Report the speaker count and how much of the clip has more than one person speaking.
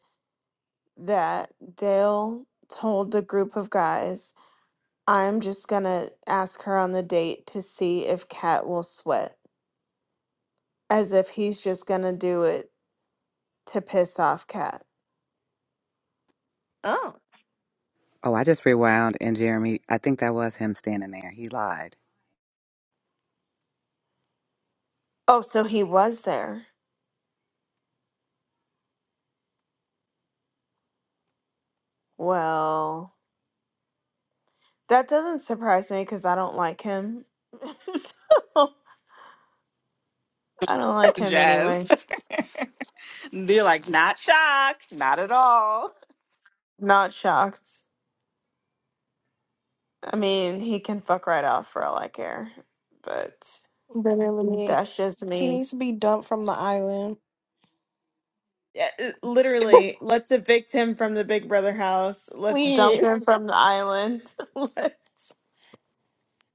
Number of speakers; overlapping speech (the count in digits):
4, about 2%